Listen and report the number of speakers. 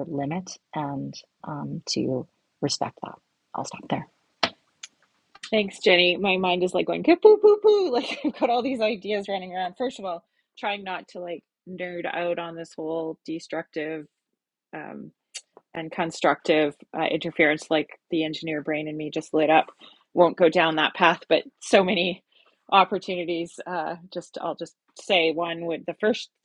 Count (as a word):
two